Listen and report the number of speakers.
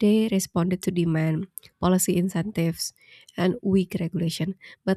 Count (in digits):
1